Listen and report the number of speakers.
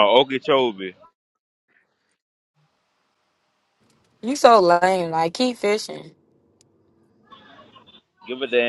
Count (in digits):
2